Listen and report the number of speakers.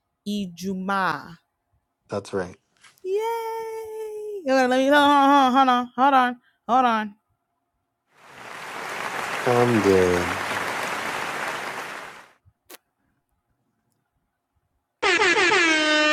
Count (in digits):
2